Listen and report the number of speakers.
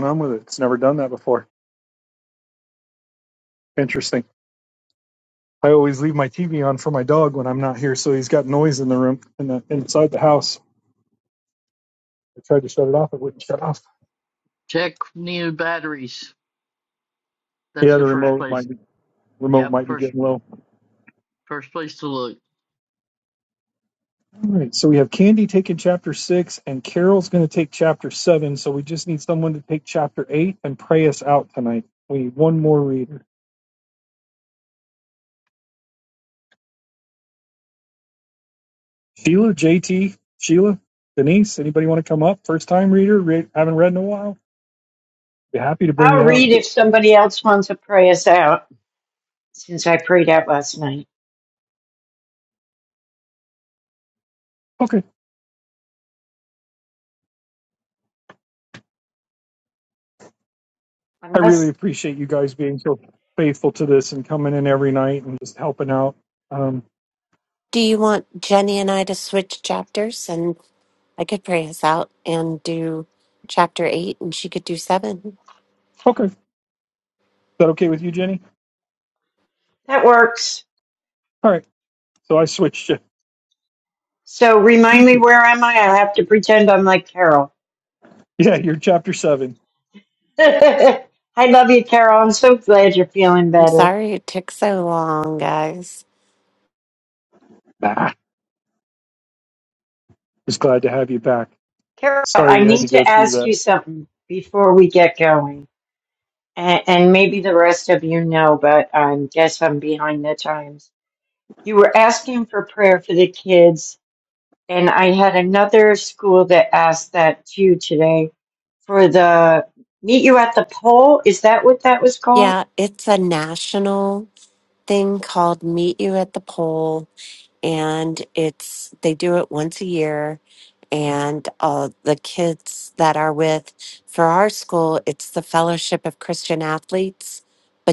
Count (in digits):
4